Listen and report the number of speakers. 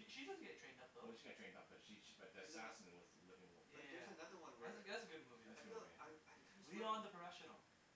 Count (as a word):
three